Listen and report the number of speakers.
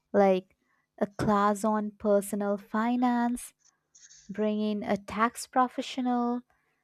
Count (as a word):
one